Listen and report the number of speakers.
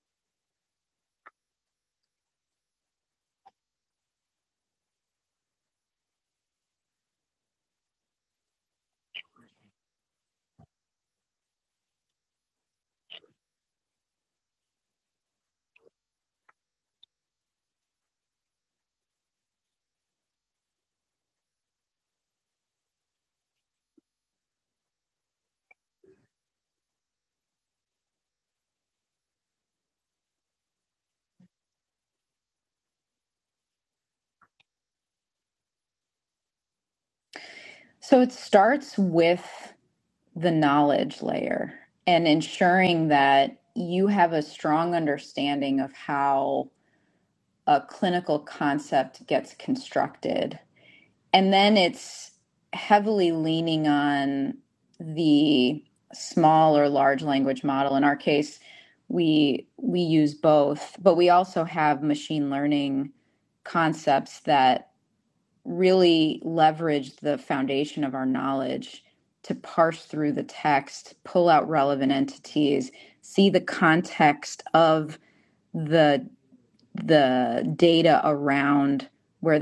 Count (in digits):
1